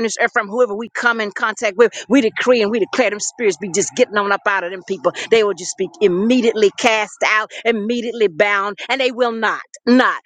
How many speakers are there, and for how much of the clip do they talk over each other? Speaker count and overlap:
1, no overlap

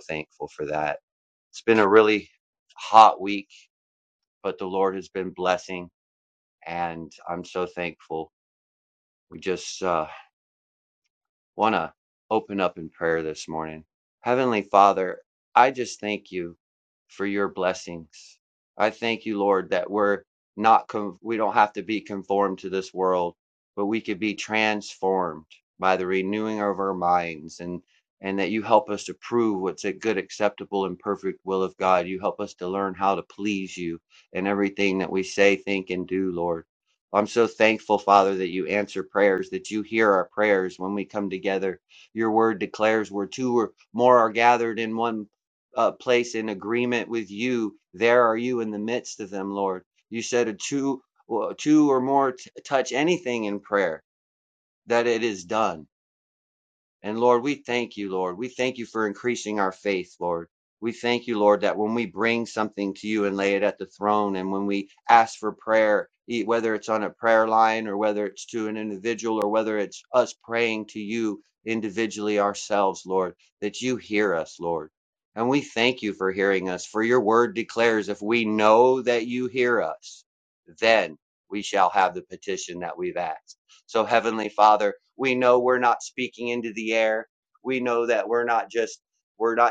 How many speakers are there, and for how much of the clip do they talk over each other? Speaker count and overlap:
1, no overlap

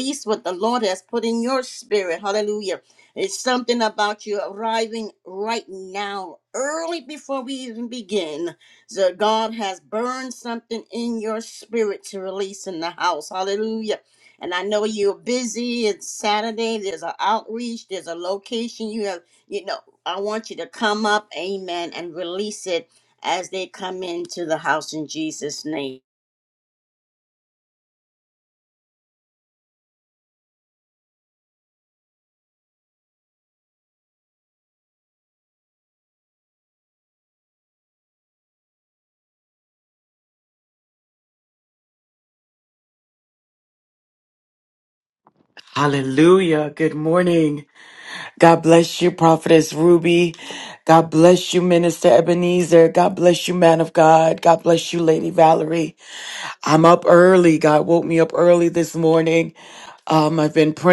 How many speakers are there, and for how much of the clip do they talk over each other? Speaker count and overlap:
2, no overlap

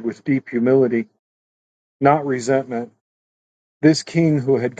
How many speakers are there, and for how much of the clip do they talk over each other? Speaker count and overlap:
1, no overlap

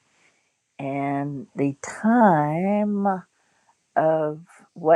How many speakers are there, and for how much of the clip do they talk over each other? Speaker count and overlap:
1, no overlap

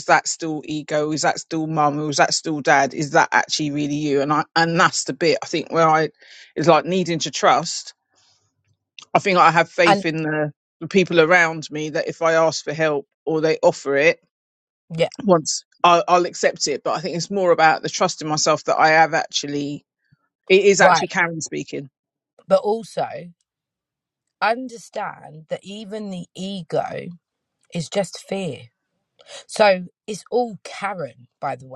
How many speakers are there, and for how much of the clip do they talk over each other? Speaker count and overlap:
2, about 1%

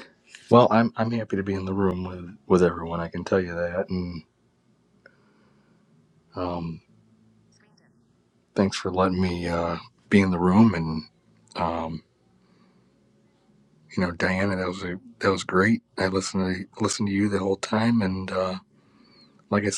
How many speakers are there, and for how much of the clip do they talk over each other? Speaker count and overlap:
1, no overlap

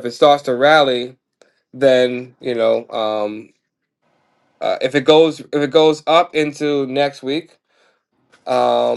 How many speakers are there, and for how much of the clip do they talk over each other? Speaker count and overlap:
1, no overlap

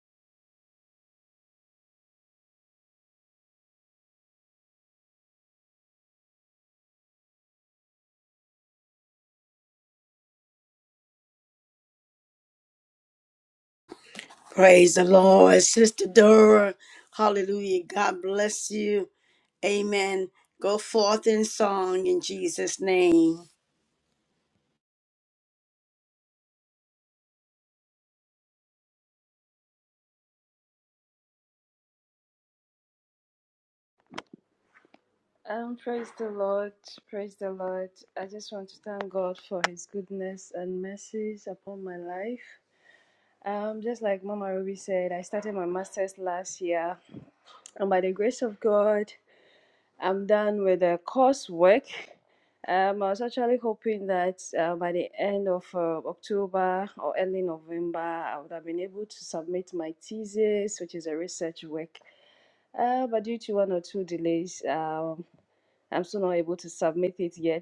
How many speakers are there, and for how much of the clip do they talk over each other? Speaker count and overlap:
2, no overlap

